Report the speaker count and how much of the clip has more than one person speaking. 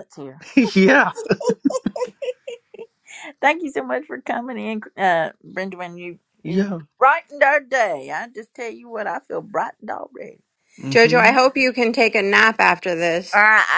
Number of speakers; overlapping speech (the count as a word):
three, about 4%